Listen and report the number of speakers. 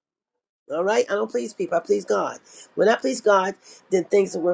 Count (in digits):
1